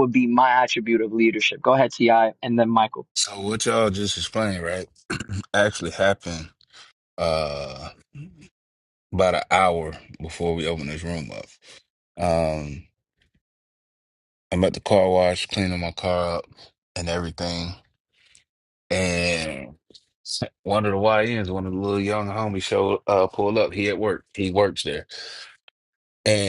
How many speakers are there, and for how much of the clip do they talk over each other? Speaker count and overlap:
two, no overlap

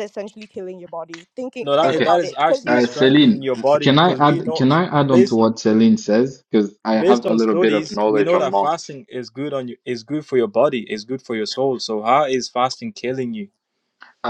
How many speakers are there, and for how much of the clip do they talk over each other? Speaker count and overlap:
three, about 34%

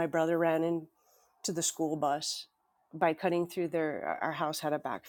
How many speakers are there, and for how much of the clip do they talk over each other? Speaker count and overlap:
one, no overlap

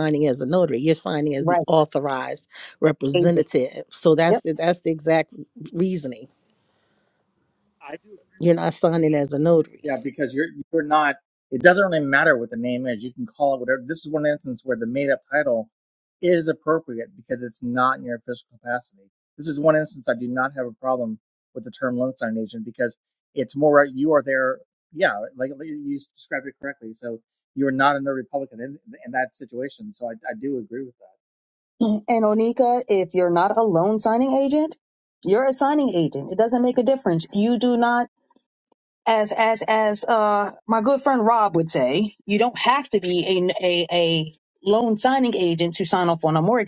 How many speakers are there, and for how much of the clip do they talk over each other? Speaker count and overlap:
three, about 1%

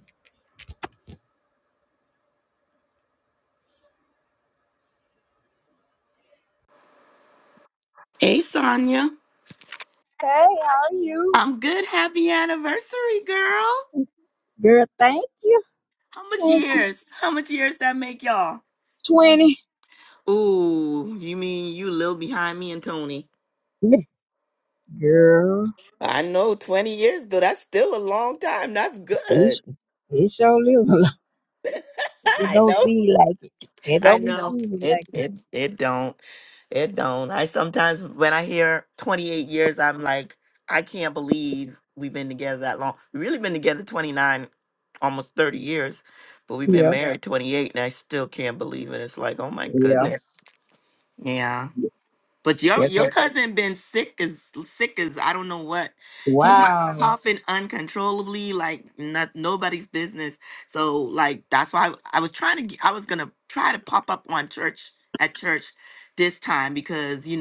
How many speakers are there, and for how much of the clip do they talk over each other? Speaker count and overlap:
two, about 6%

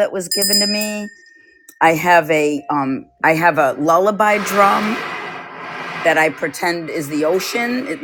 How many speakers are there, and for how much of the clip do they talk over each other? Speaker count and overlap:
one, no overlap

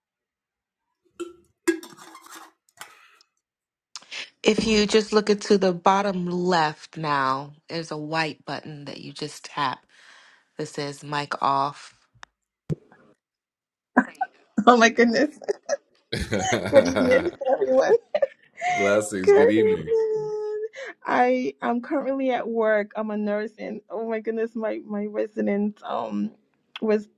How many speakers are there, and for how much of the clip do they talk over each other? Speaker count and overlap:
three, about 4%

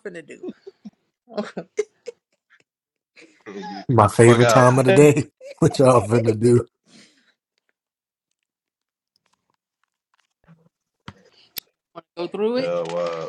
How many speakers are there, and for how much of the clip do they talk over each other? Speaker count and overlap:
three, about 7%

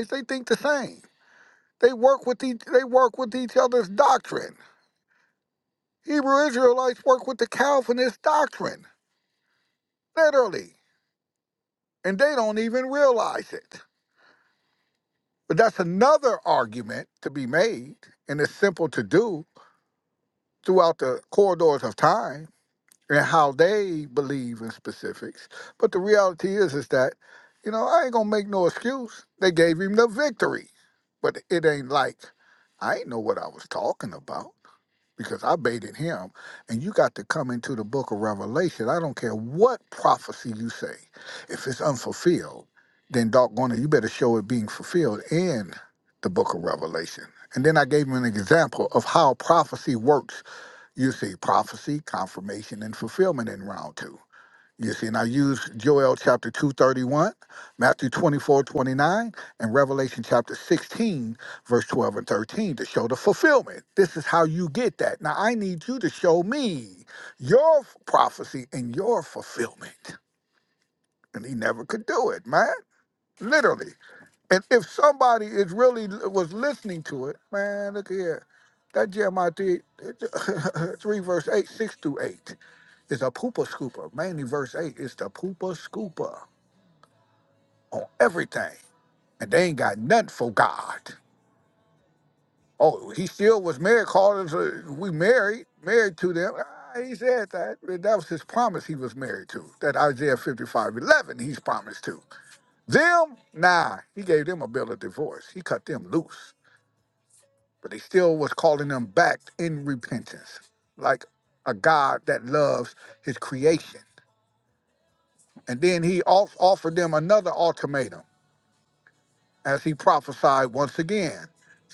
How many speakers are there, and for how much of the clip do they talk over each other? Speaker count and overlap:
one, no overlap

